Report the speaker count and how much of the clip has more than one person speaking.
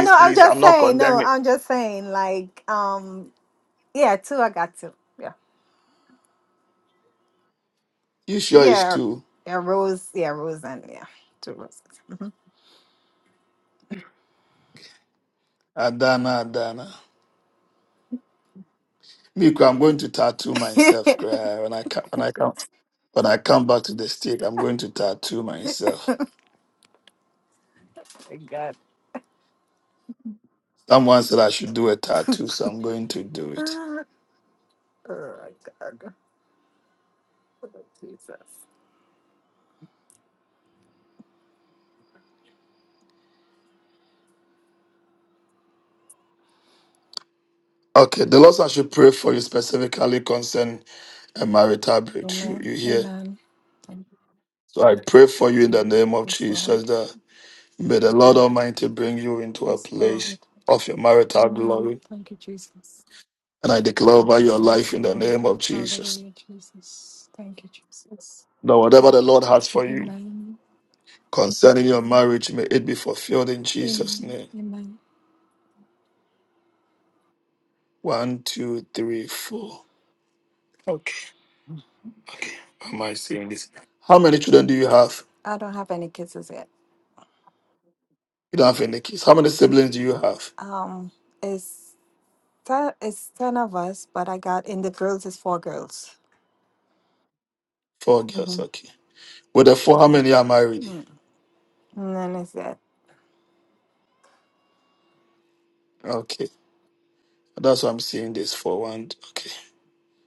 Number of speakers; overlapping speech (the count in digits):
2, about 6%